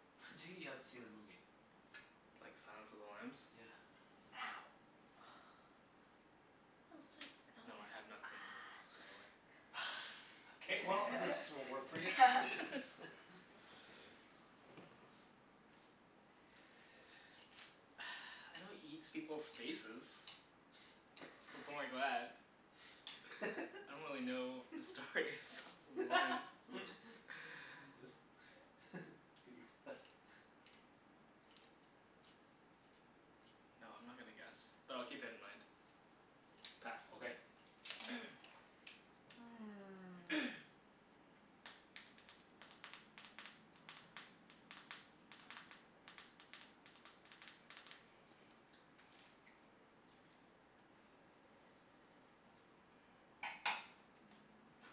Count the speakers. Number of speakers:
3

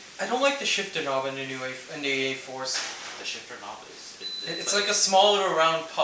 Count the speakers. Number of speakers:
2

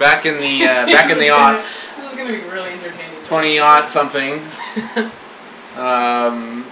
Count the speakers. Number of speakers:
2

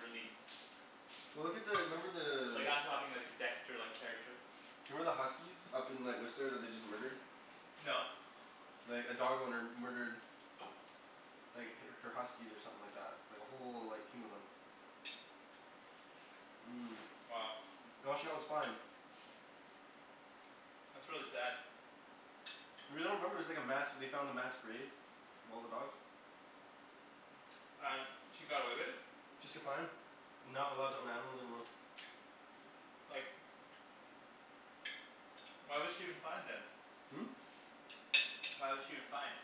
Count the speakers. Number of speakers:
2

